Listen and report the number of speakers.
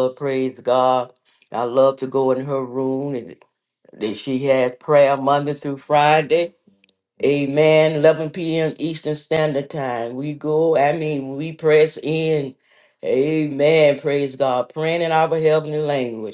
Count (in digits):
1